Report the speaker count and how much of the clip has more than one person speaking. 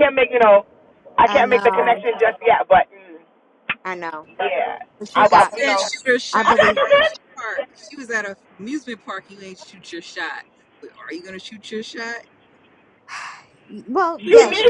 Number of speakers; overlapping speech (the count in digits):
3, about 19%